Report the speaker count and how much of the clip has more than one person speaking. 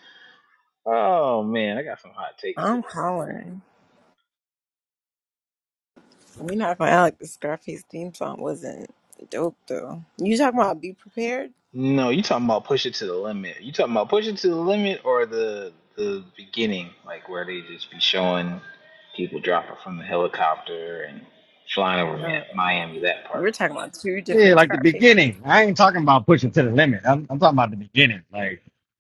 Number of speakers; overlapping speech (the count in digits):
3, about 6%